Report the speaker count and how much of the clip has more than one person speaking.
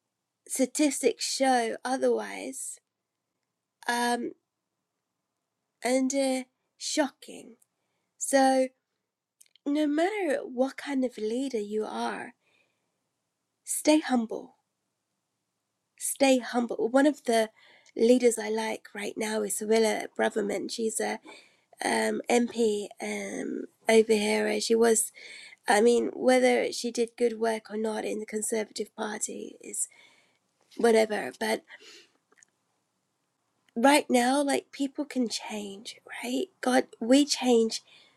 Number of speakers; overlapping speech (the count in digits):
1, no overlap